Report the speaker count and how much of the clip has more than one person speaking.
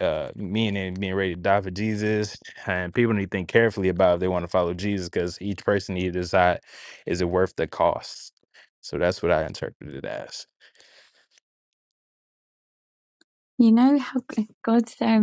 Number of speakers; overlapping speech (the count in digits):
2, no overlap